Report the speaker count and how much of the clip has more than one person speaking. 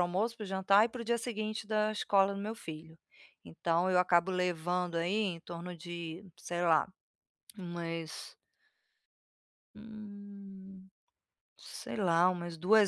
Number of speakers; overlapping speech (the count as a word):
one, no overlap